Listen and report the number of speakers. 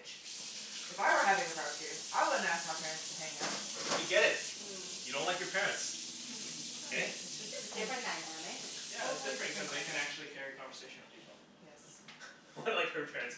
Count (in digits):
4